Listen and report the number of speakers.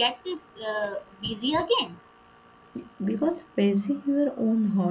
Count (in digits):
2